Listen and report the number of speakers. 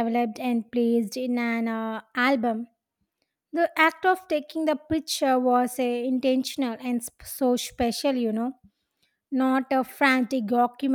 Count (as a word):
one